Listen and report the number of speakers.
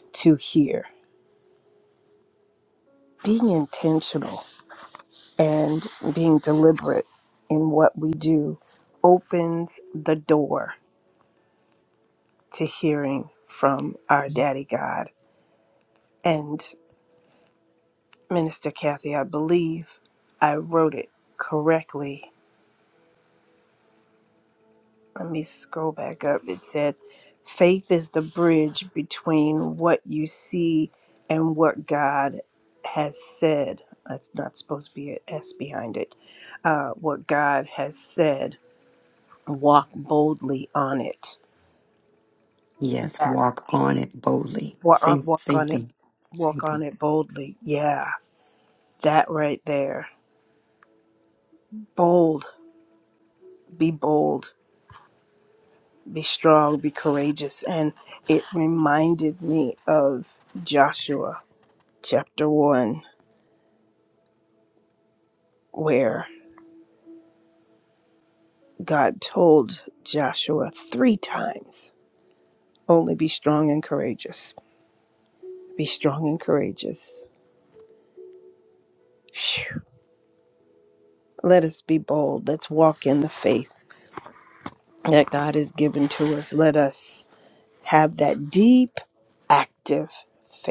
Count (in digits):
2